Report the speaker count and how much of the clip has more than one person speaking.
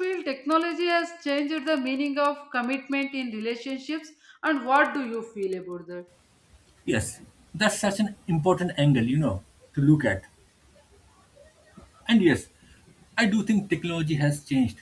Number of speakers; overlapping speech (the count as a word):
two, no overlap